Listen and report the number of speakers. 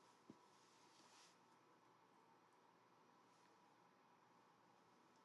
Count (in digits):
0